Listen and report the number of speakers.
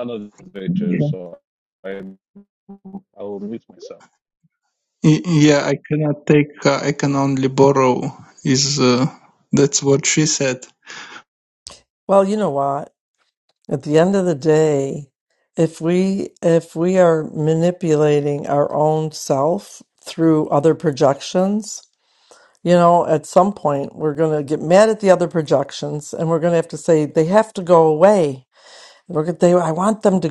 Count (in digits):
3